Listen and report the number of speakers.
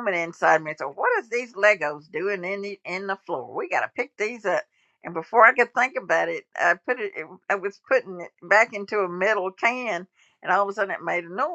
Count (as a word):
one